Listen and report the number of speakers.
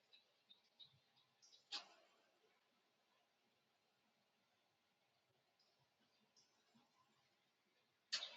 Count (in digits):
0